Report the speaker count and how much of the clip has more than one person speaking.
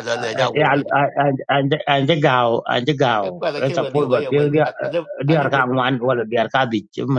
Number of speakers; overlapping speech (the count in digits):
2, about 26%